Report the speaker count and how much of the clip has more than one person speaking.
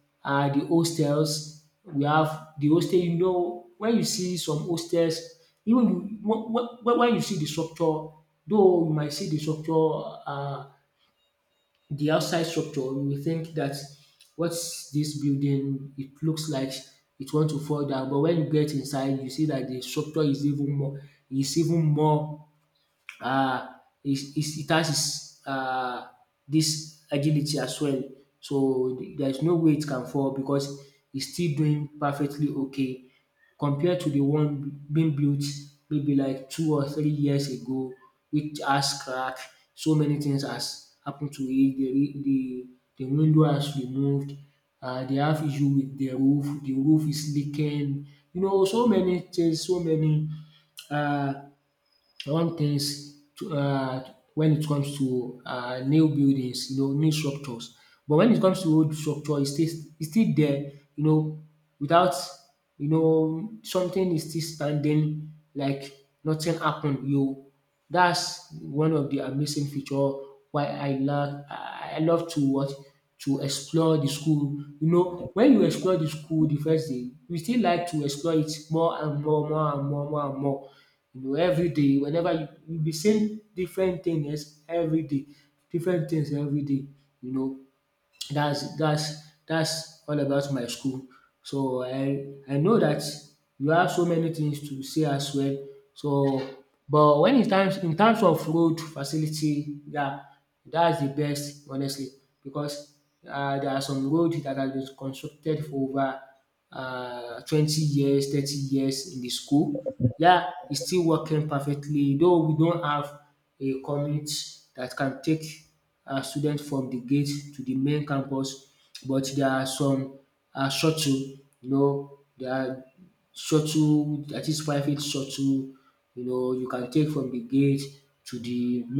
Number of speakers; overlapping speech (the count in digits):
1, no overlap